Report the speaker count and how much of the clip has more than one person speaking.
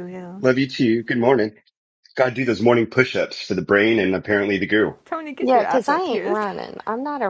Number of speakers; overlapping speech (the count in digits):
3, about 13%